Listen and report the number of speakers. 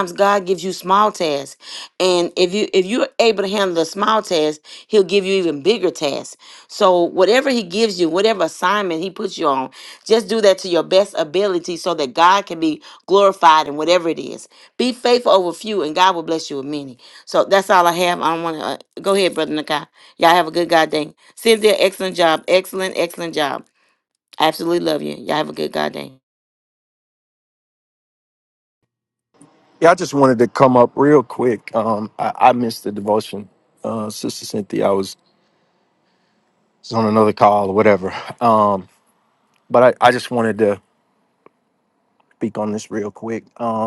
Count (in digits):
2